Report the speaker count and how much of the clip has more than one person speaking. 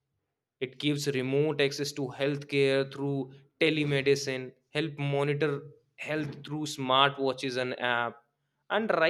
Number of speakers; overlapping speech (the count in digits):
1, no overlap